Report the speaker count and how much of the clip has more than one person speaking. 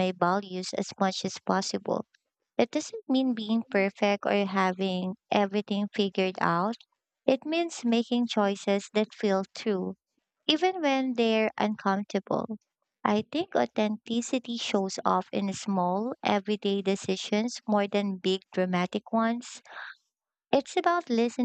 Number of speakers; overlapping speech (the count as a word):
one, no overlap